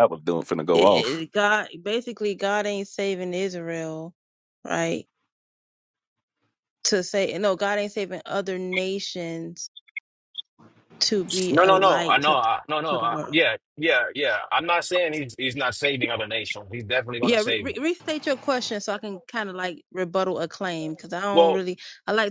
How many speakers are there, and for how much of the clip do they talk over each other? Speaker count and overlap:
3, about 12%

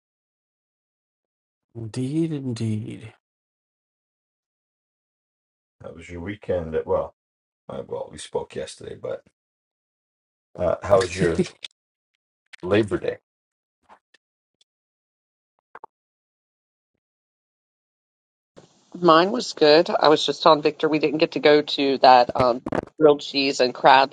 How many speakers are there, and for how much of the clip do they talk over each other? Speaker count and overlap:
3, no overlap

